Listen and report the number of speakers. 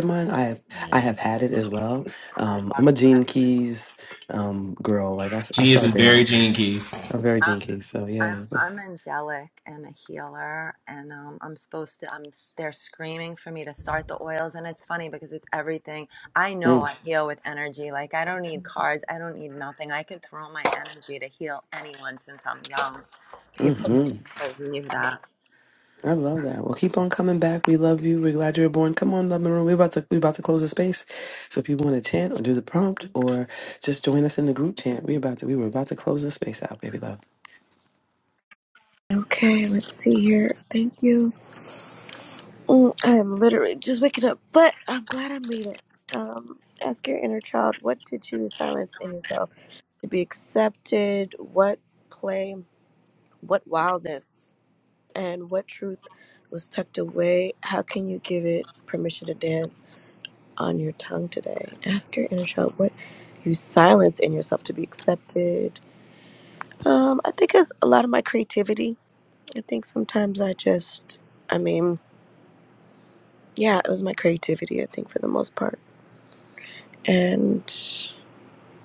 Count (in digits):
4